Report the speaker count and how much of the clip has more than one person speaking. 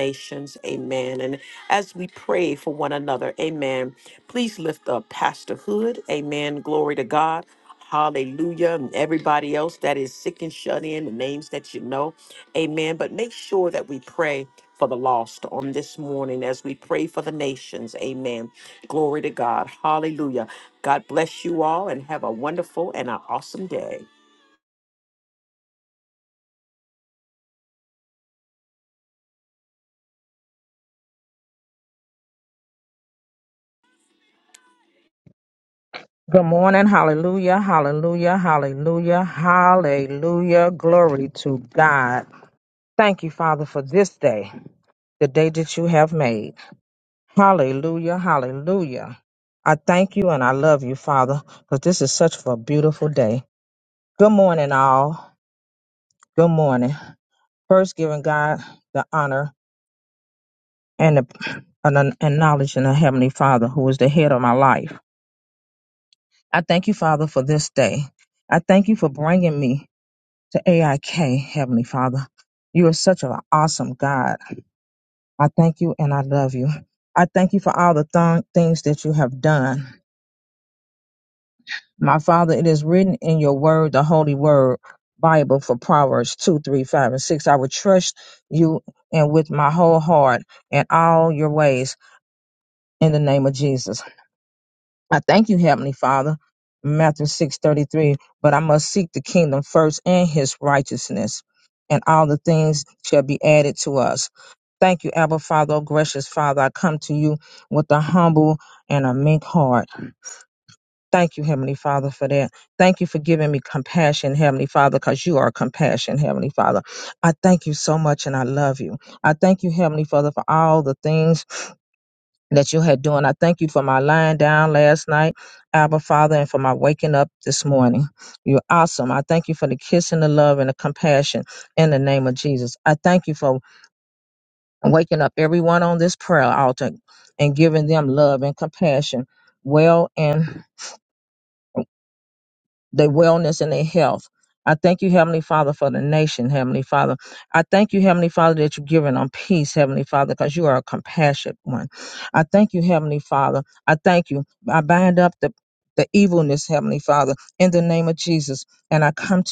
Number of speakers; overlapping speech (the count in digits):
2, no overlap